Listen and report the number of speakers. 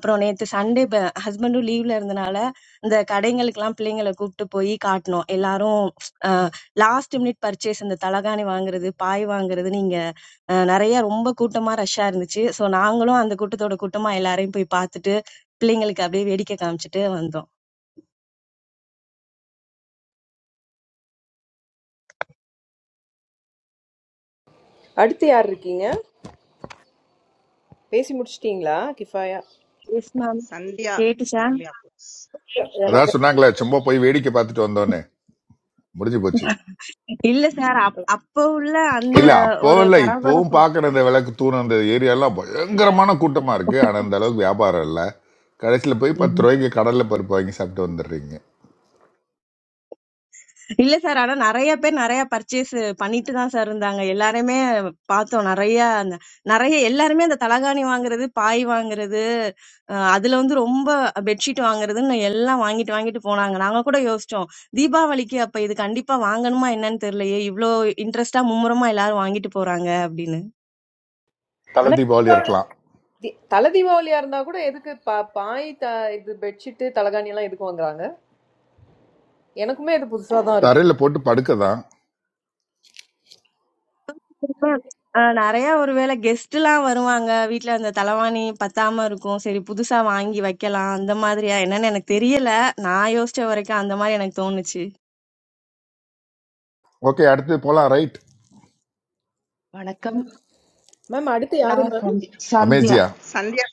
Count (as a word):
five